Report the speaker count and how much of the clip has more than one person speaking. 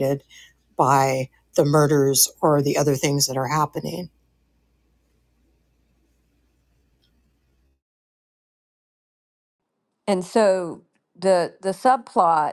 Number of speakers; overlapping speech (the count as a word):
two, no overlap